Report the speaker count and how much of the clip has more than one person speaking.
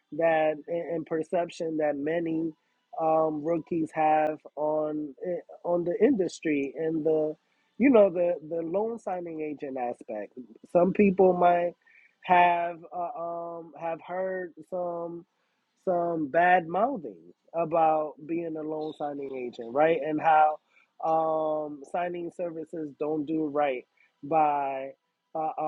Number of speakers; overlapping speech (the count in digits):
1, no overlap